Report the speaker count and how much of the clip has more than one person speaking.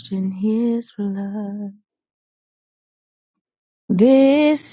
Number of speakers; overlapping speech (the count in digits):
1, no overlap